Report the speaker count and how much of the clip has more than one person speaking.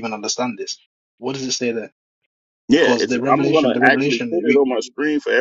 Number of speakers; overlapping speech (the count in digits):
2, about 34%